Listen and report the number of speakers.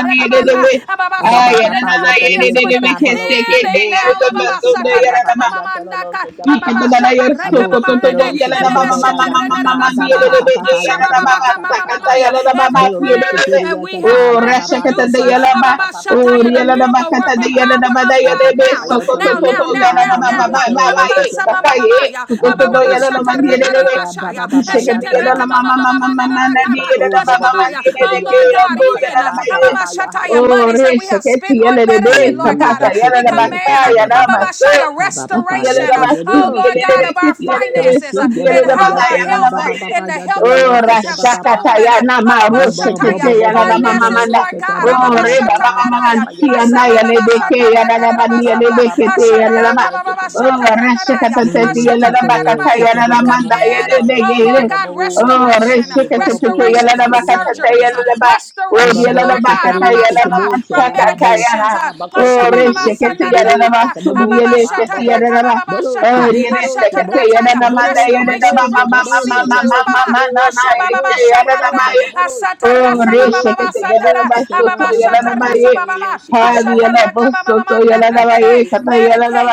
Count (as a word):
three